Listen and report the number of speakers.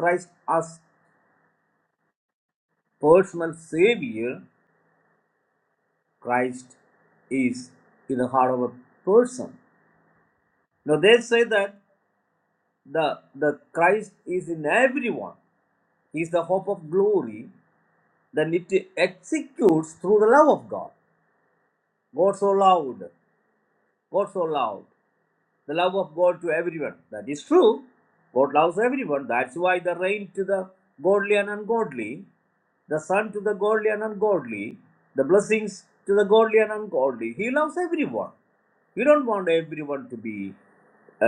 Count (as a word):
one